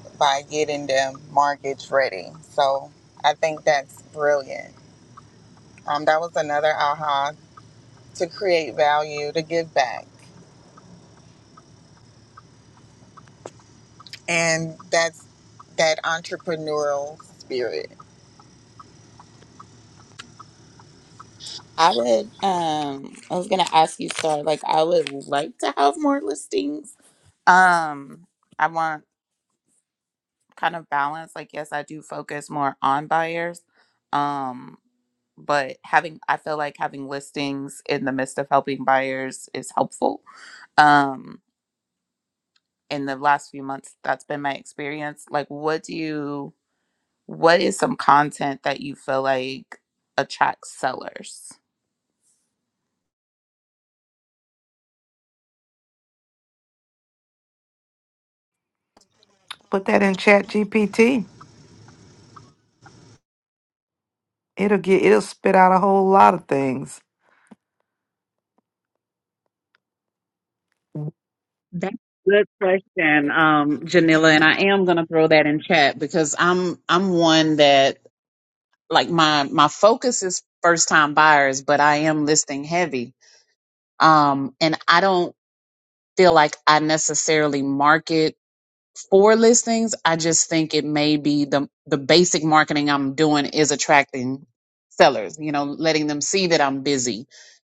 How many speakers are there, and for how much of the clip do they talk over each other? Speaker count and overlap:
4, no overlap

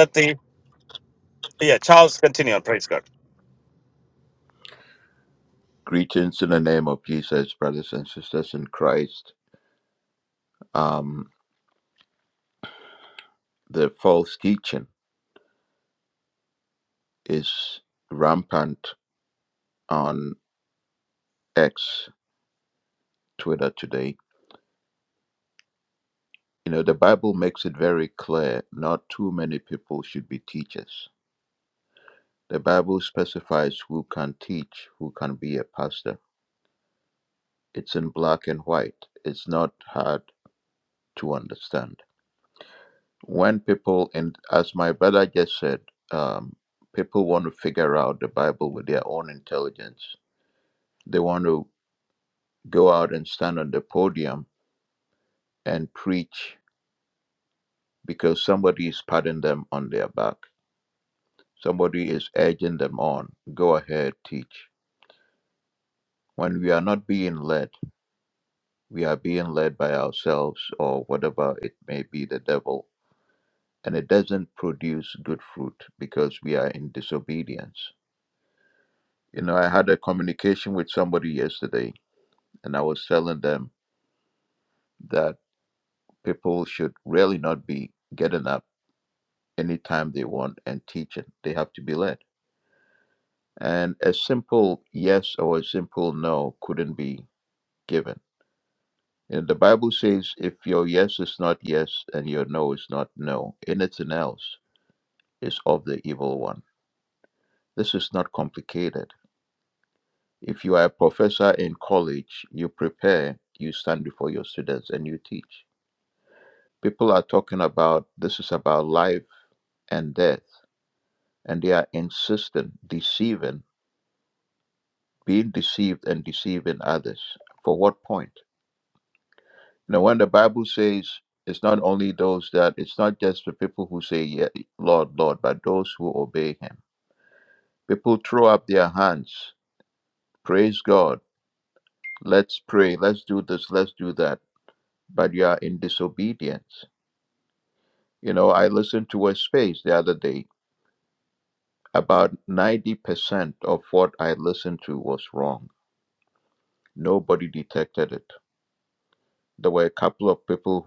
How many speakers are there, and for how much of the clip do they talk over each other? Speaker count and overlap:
2, no overlap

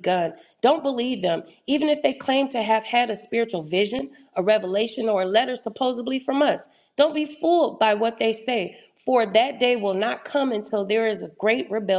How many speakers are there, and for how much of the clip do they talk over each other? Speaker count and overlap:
1, no overlap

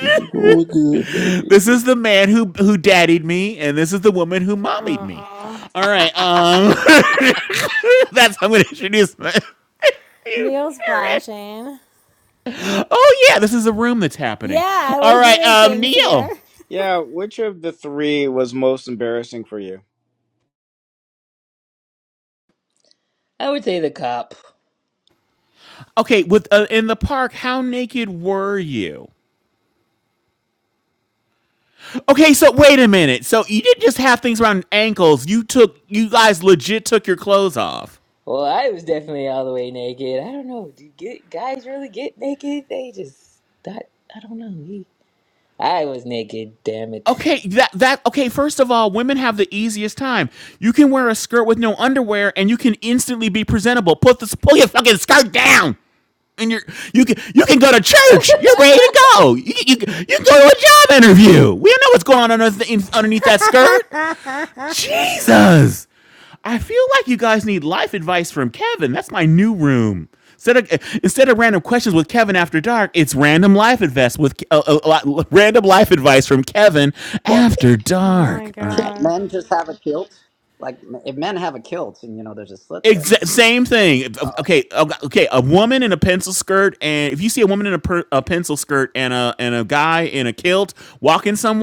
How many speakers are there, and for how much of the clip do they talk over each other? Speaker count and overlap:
6, about 6%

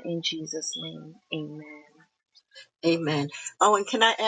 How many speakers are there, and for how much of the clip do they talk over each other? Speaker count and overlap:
2, no overlap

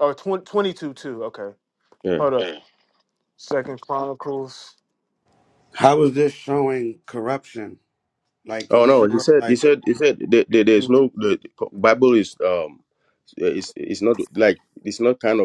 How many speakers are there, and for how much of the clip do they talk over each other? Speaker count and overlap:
3, about 7%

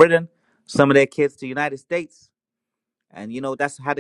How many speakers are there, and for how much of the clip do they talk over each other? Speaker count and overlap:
1, no overlap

